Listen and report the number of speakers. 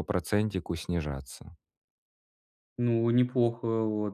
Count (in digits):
2